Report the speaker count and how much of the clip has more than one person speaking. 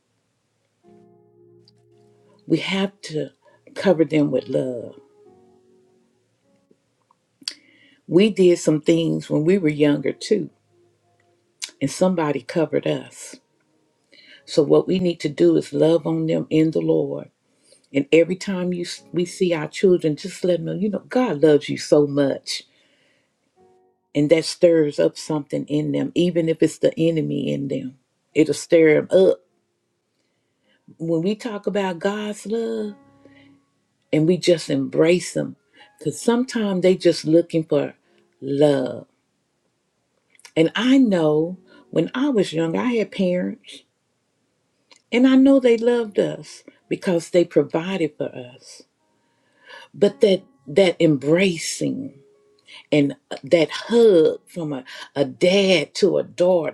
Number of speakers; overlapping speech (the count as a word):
one, no overlap